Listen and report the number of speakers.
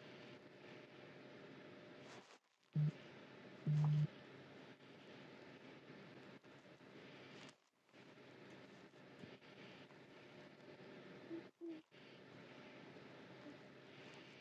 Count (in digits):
0